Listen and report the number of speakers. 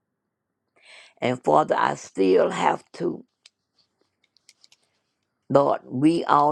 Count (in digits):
1